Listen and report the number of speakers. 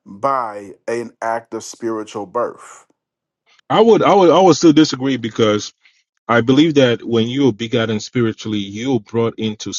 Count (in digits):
2